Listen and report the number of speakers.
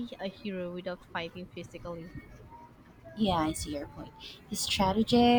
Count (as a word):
two